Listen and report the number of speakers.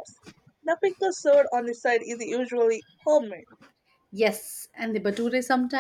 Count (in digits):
2